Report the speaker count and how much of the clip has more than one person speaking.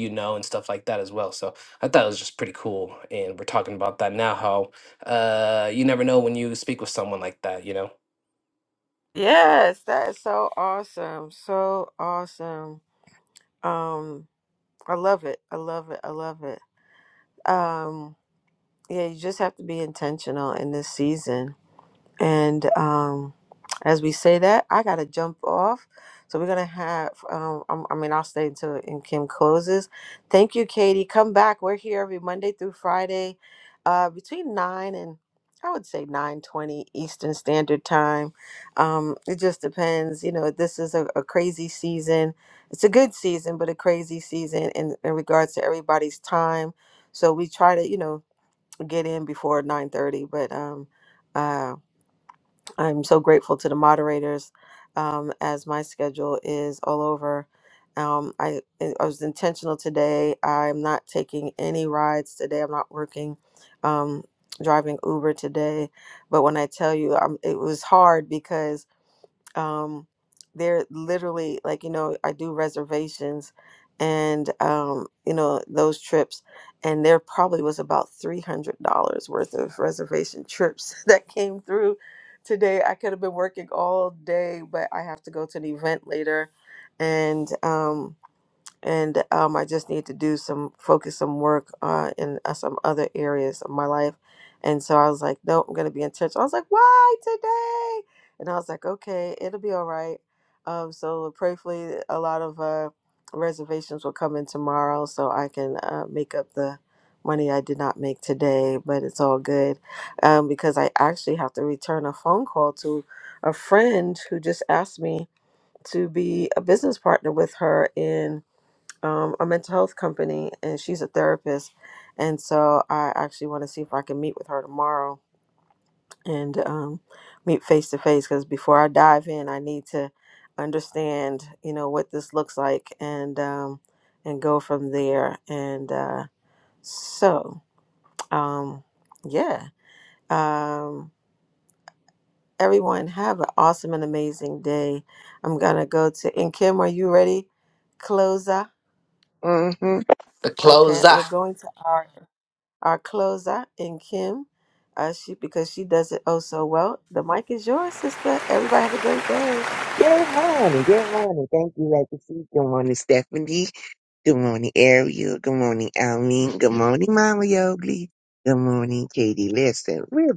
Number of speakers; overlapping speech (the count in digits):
3, under 1%